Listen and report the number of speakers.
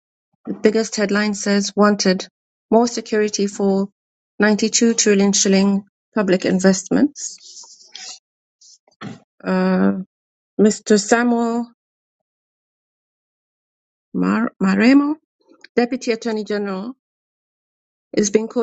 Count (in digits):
1